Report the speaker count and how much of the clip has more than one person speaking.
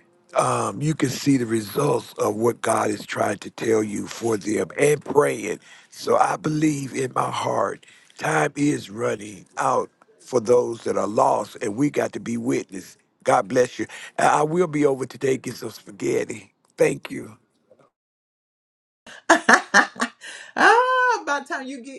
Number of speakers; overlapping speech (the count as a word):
two, no overlap